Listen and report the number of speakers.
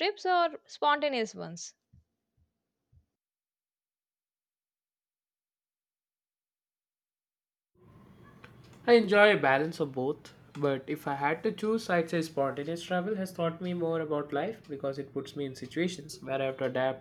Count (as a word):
two